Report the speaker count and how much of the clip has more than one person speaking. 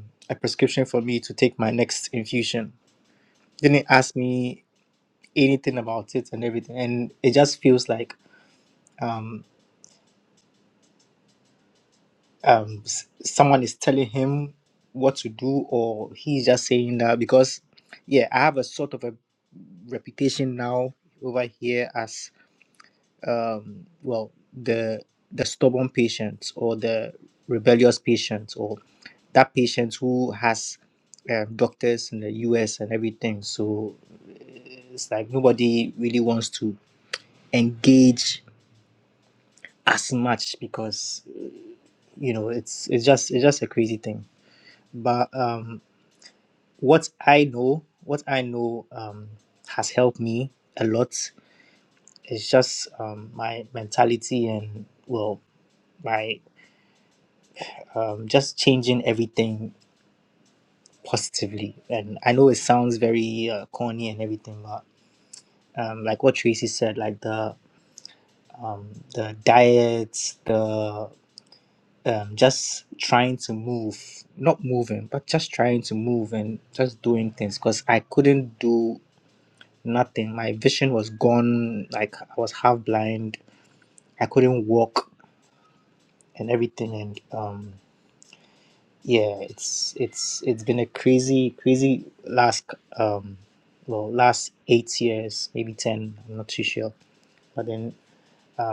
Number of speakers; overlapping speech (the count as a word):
one, no overlap